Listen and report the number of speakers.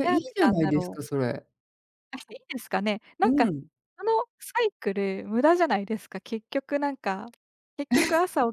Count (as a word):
two